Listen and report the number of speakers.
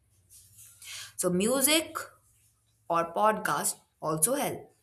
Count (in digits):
1